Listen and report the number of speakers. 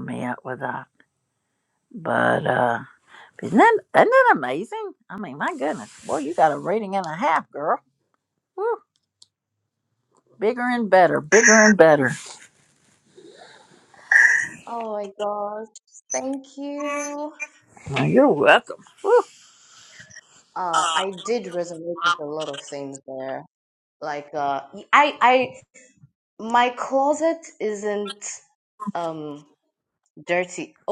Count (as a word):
two